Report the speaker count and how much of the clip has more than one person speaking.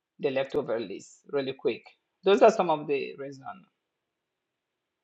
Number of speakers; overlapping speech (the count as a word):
one, no overlap